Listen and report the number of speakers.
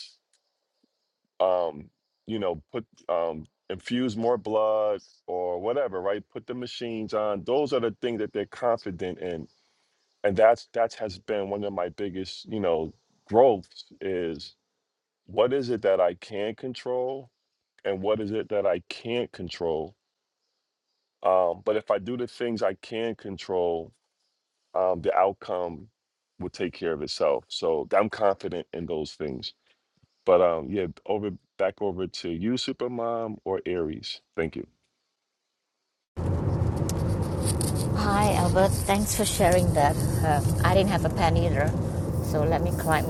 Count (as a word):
two